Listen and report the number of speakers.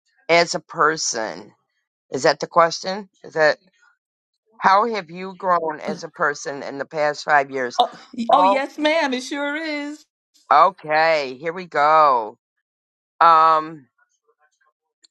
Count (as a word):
two